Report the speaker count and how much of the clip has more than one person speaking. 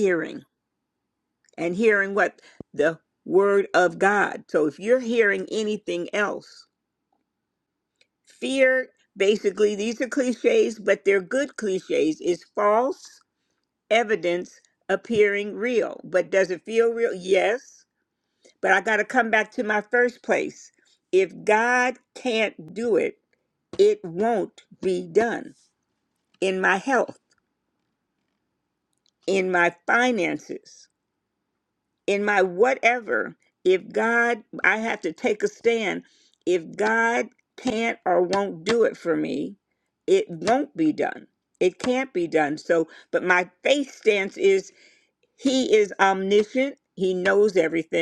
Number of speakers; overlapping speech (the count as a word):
one, no overlap